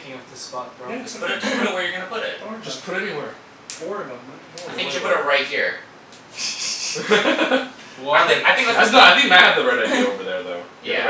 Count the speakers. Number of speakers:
4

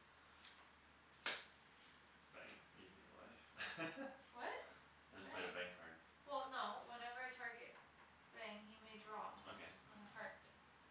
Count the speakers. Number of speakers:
2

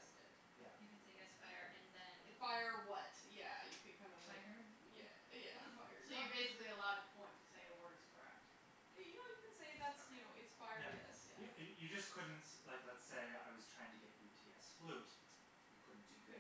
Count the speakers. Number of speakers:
4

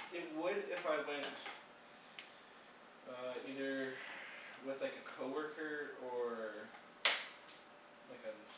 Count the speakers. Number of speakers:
1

